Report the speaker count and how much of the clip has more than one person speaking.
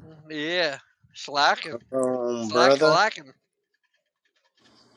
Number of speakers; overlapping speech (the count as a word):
two, about 10%